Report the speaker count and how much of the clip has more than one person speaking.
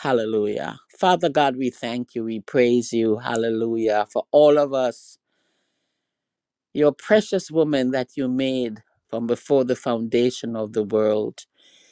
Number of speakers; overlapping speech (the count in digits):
1, no overlap